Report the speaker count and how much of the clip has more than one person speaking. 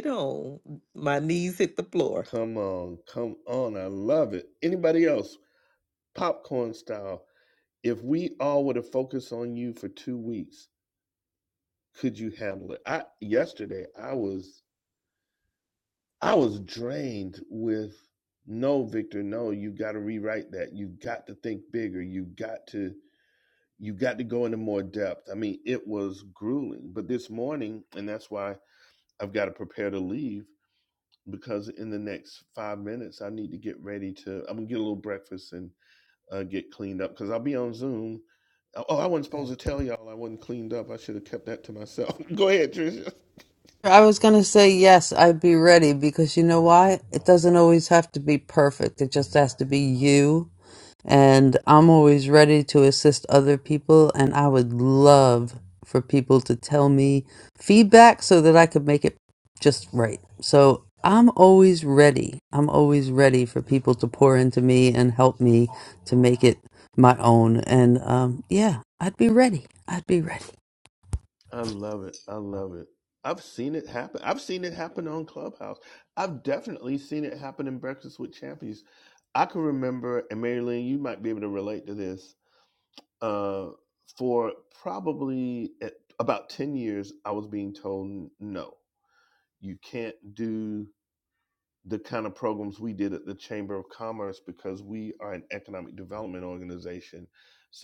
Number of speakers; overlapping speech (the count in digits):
3, no overlap